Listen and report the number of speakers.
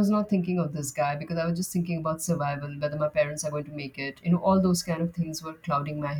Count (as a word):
one